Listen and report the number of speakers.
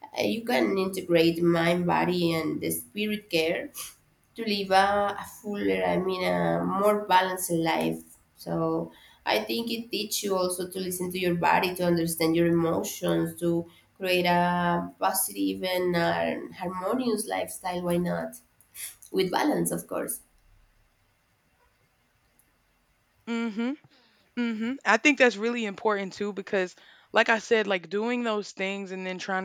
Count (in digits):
2